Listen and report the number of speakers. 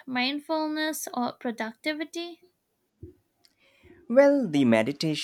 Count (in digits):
2